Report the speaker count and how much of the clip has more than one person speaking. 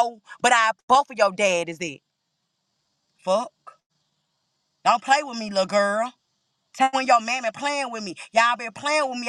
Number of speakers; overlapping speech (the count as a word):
one, no overlap